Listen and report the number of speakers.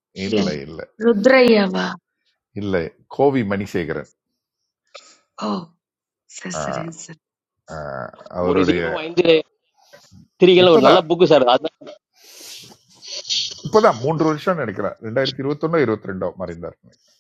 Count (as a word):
three